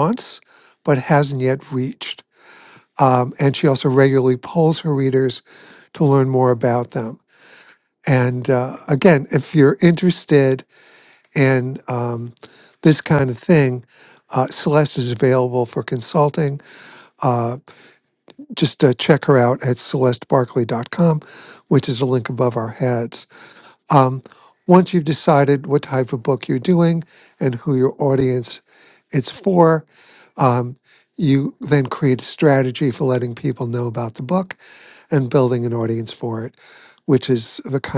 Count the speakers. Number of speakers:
1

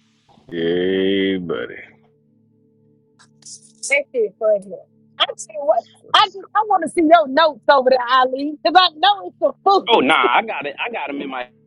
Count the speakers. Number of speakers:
3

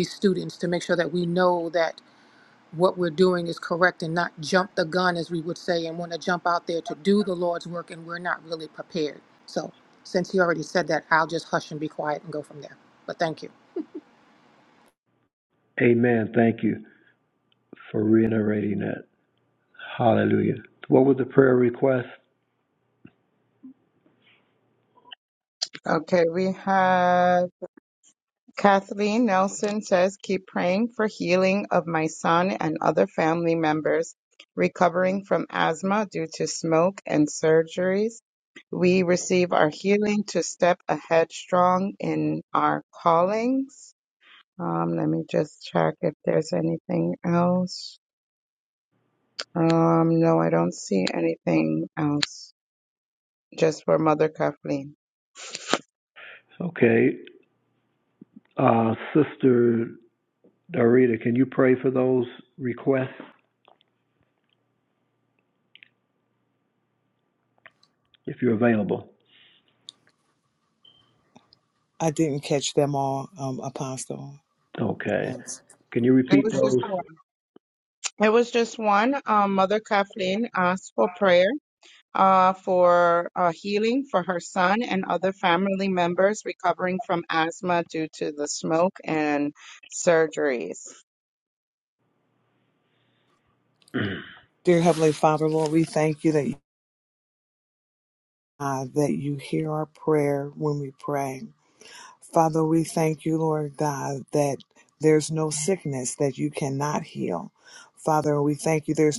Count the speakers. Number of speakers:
4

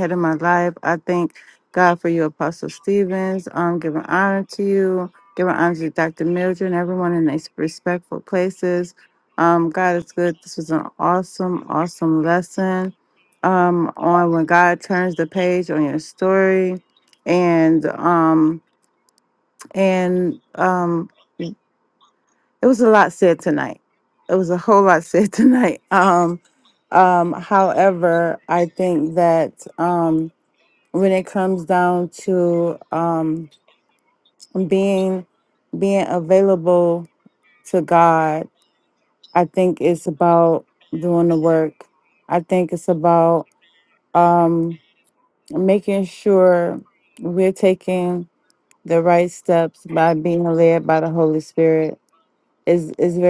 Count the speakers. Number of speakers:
1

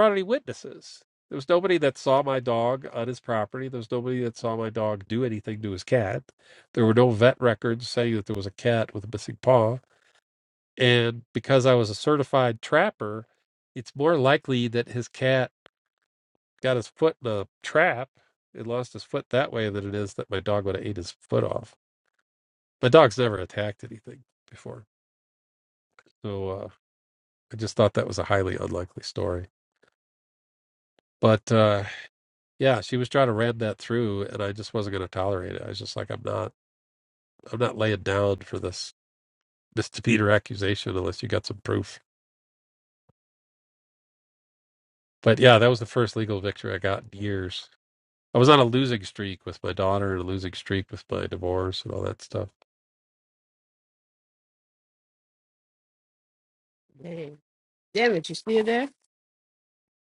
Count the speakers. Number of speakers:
2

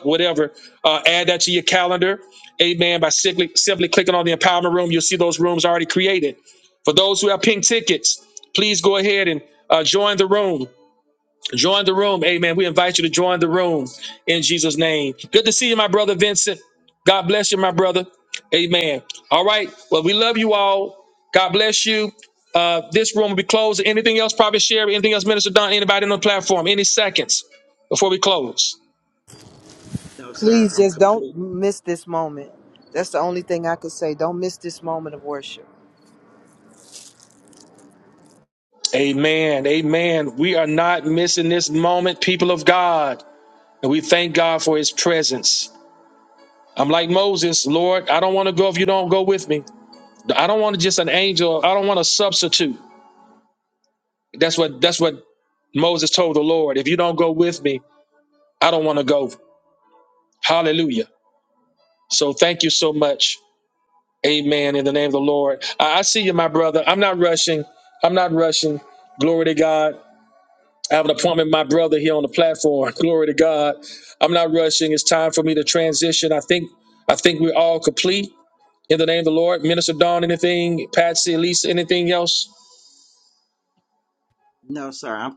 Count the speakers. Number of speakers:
3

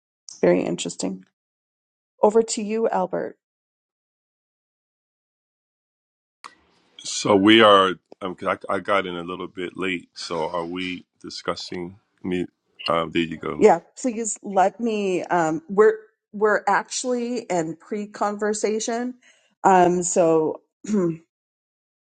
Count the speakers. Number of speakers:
2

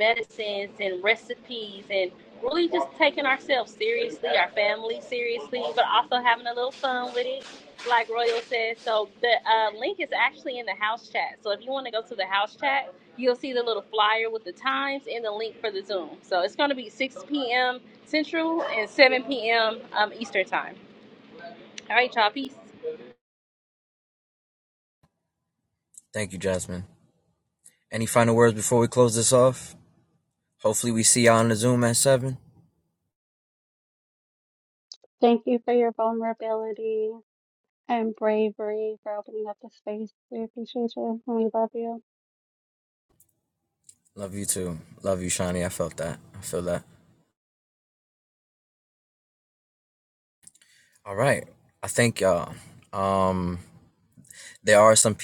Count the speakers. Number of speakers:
3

